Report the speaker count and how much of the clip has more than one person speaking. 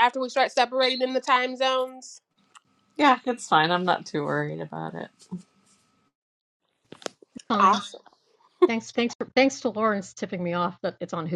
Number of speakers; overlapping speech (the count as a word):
three, about 2%